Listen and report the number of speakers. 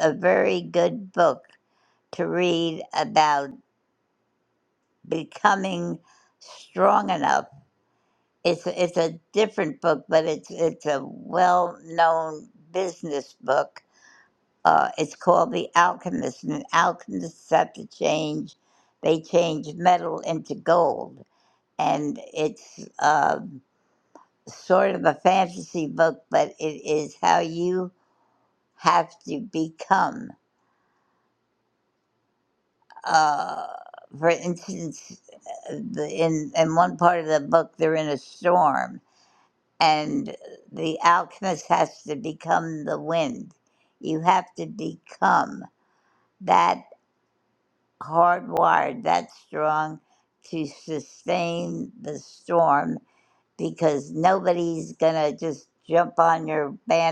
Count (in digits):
1